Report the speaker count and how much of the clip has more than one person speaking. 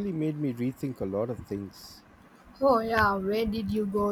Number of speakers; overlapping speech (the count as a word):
two, no overlap